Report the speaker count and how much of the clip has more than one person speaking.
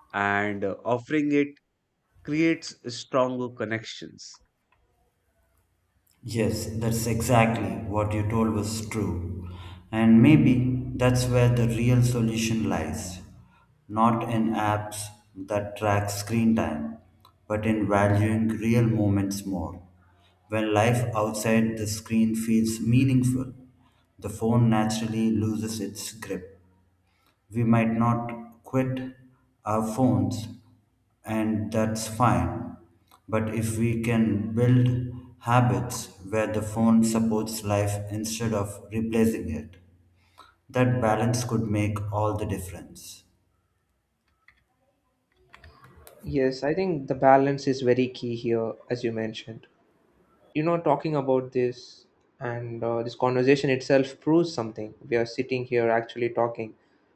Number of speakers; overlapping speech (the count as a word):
three, no overlap